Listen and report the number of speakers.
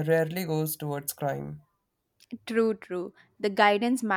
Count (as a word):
two